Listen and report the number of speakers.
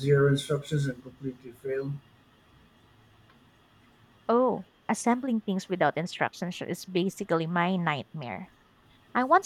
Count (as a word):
two